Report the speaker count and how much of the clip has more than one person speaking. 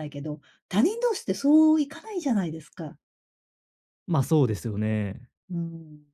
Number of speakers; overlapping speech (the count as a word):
two, no overlap